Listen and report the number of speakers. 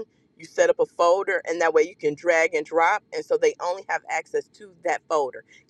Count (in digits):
1